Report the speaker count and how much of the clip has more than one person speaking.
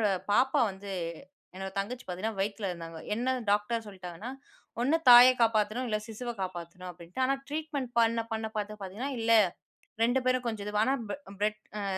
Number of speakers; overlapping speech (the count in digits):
1, no overlap